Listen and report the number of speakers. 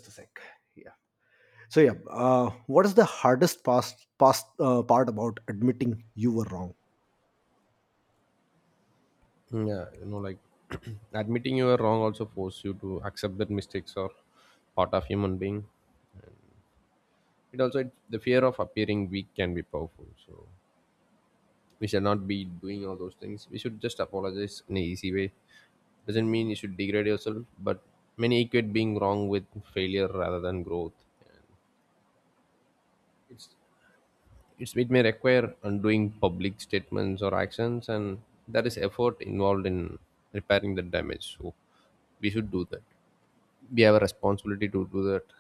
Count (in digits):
2